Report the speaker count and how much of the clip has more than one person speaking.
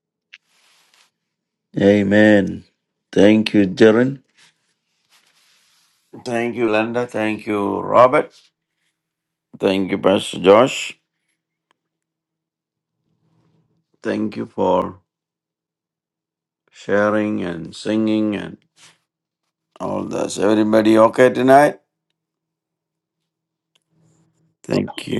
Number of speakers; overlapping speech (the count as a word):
one, no overlap